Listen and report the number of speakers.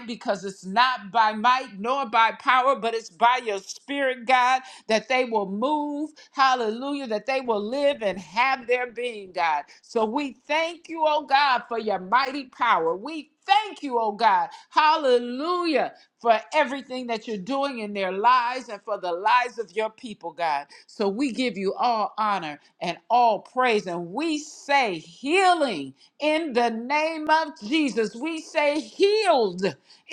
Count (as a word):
one